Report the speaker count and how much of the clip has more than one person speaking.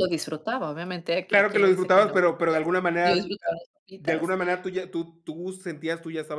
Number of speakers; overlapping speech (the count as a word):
two, about 21%